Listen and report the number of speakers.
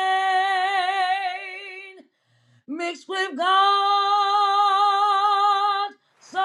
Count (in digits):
1